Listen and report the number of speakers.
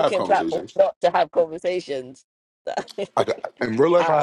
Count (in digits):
2